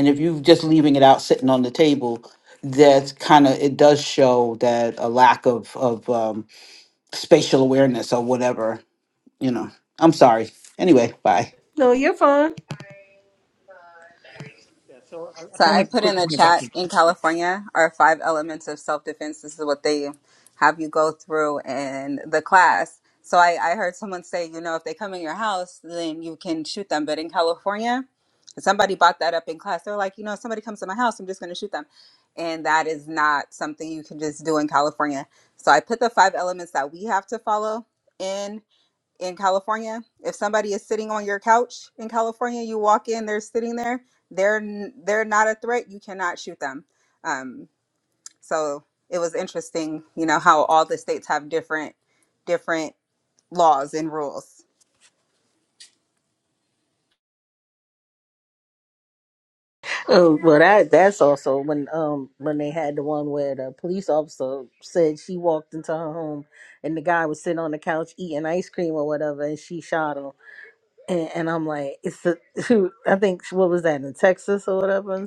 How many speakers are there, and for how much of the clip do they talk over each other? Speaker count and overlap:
four, about 1%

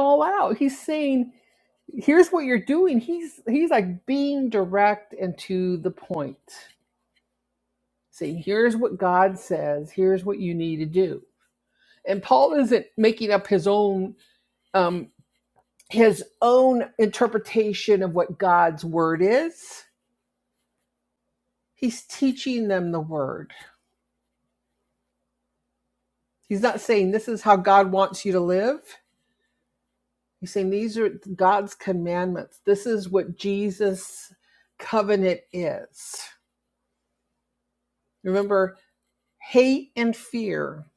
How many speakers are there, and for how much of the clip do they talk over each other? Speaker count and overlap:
one, no overlap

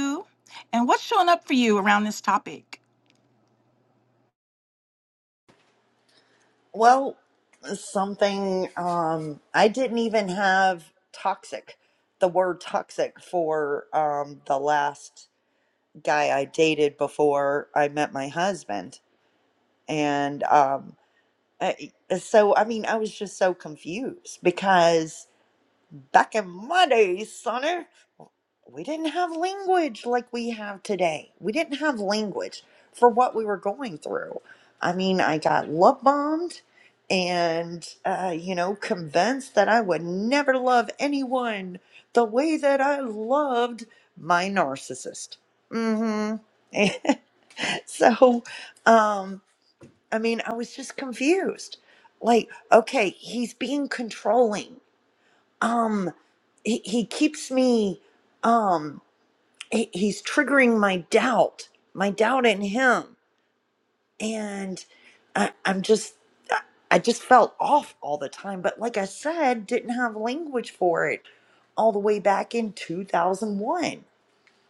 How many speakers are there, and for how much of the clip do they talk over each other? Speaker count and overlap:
two, no overlap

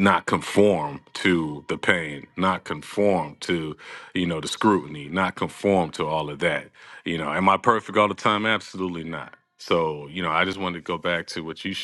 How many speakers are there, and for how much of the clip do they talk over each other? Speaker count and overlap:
one, no overlap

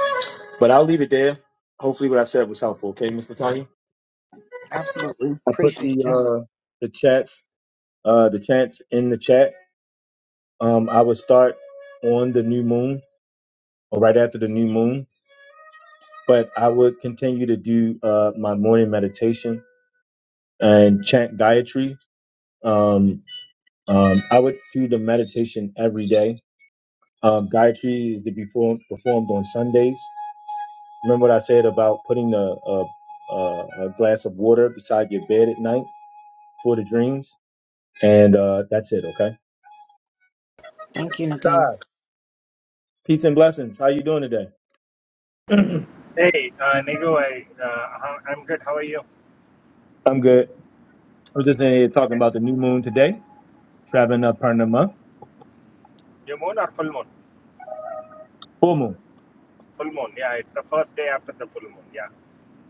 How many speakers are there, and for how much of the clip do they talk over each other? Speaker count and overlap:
three, about 1%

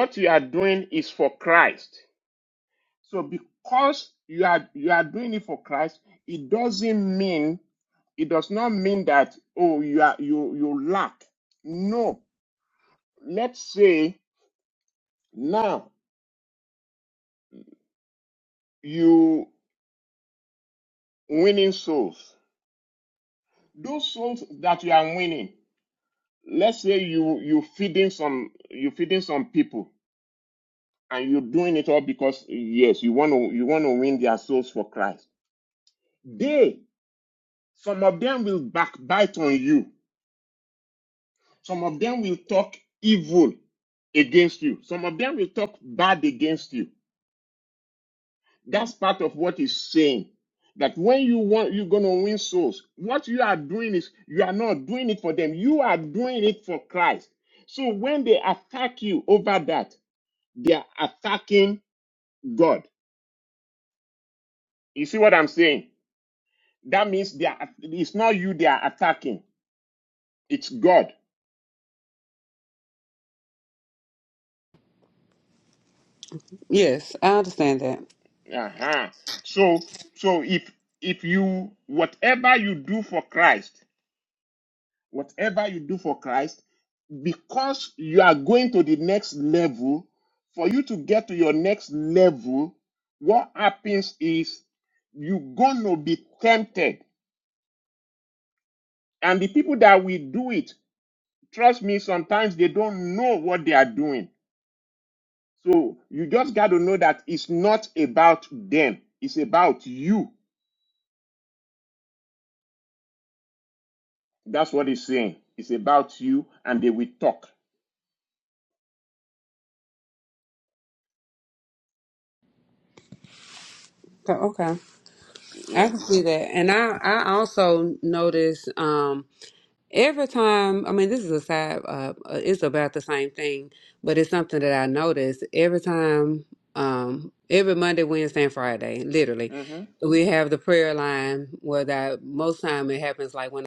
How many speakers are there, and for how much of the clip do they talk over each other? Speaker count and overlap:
two, under 1%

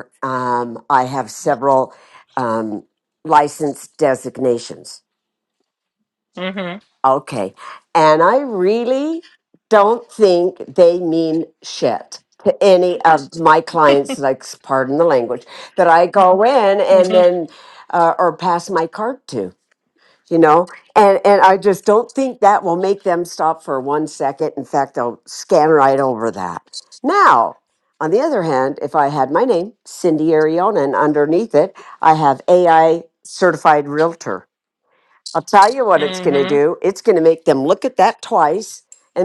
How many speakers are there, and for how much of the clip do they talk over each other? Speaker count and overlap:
two, about 3%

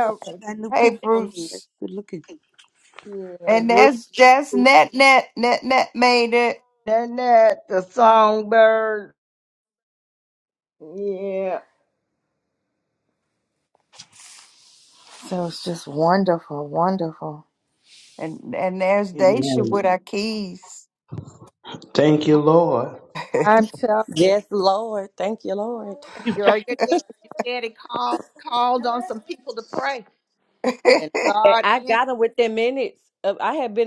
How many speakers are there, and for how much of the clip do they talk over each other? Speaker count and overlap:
six, about 7%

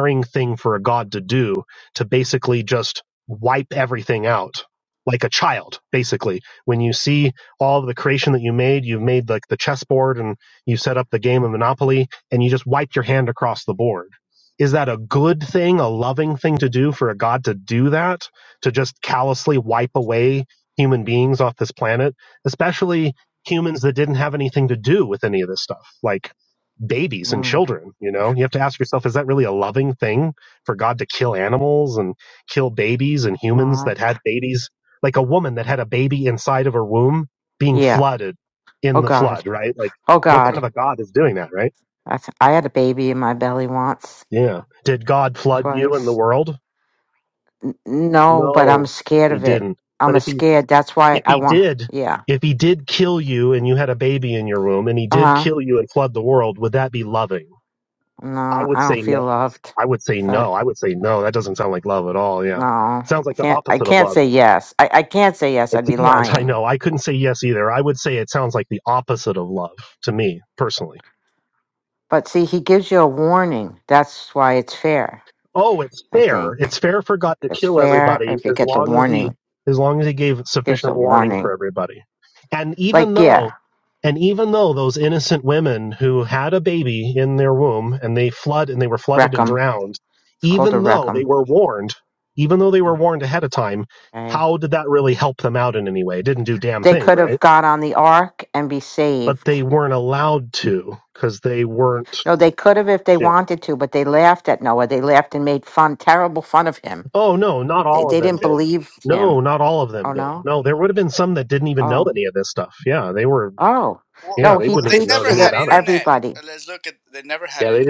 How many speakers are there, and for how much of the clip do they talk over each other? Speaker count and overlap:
three, about 15%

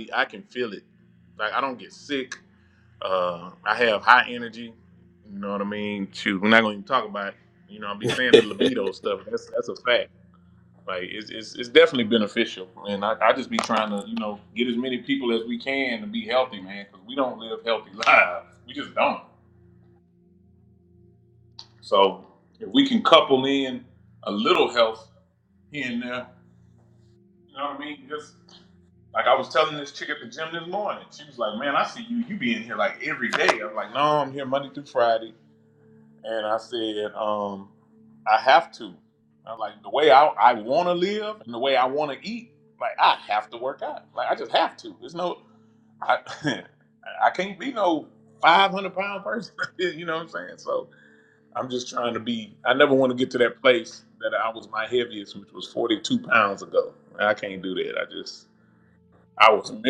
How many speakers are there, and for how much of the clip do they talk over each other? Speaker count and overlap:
one, no overlap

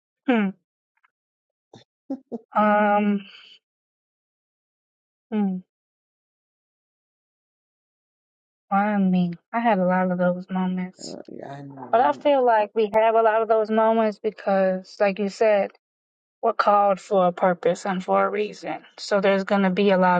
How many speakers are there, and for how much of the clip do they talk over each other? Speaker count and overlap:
two, about 2%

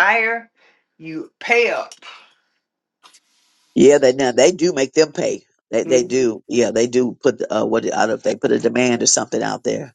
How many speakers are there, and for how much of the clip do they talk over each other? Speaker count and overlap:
two, about 4%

